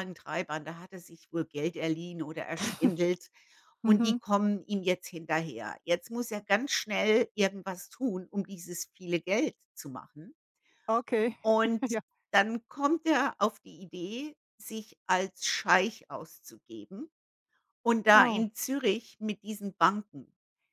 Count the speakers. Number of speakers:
2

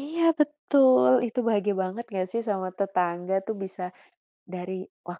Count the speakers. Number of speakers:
1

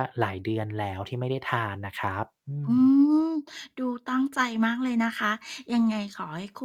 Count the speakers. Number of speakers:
2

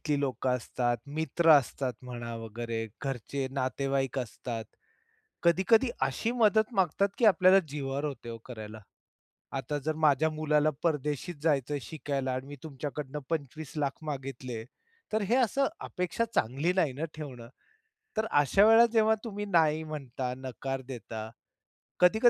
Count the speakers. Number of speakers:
1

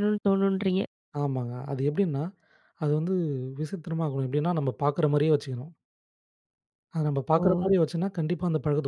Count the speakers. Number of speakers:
2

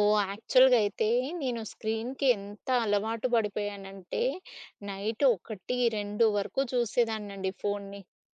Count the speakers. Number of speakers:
1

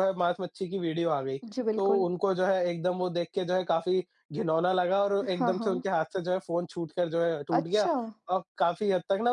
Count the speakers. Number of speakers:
2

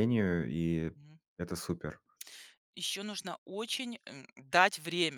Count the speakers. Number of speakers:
2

